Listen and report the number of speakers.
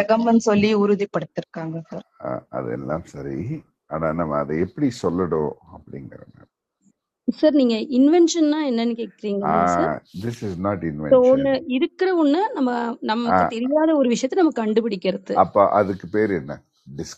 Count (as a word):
three